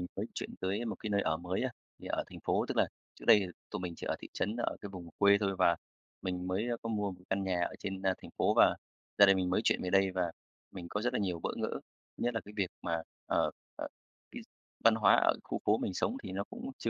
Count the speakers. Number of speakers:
1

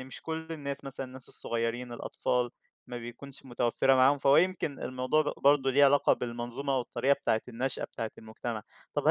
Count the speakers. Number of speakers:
1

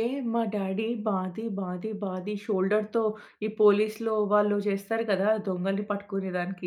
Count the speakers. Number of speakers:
1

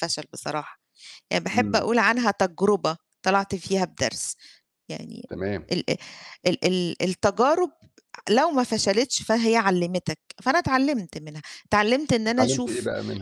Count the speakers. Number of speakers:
2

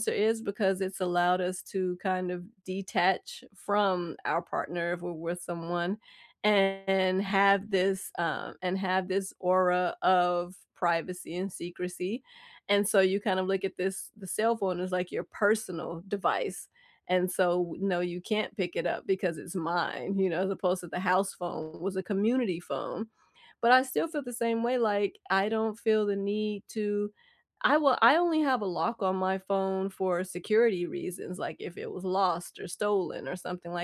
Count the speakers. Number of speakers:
1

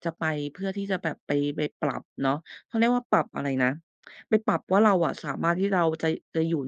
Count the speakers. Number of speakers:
1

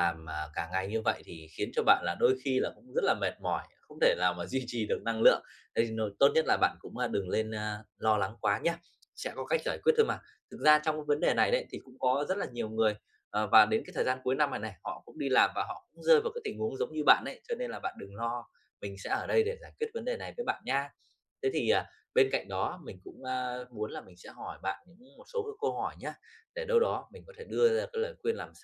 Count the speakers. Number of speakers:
1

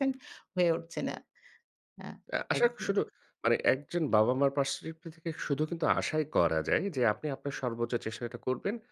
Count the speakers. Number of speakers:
2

